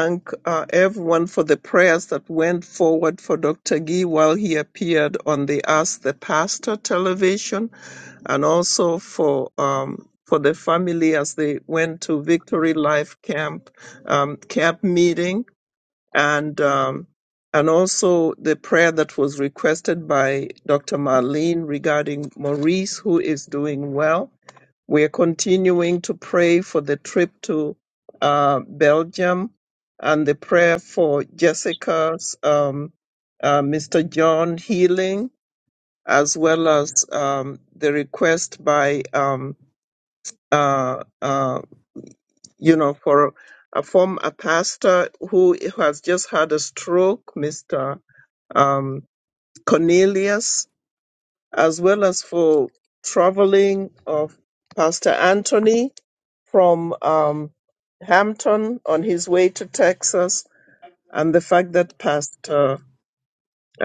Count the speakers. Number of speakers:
1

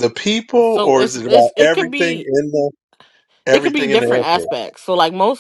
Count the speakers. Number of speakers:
2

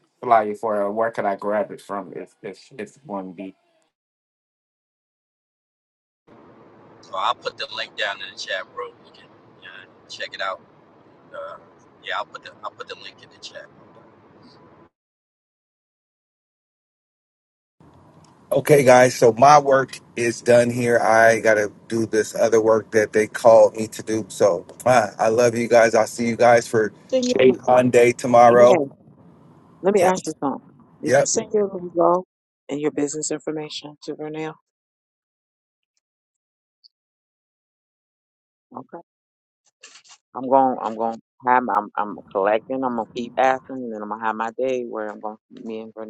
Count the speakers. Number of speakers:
4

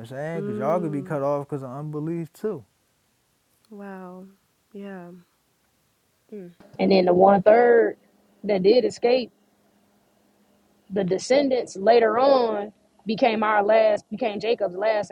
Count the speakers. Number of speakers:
3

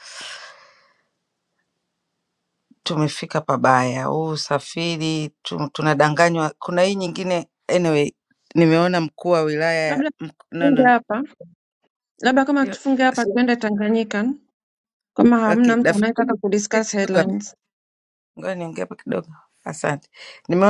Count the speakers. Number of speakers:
2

